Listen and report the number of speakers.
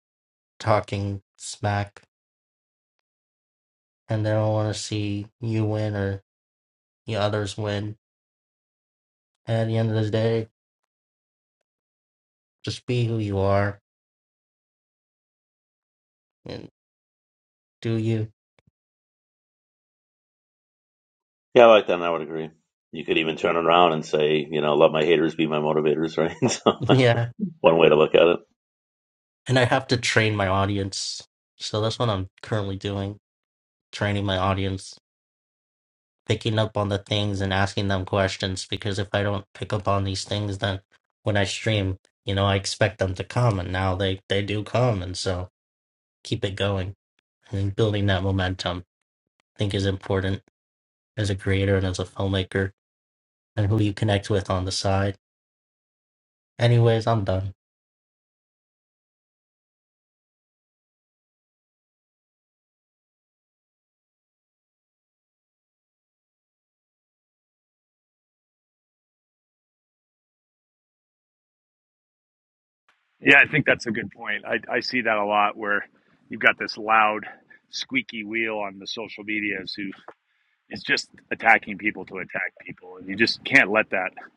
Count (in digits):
3